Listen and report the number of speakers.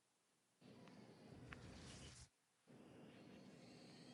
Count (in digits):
0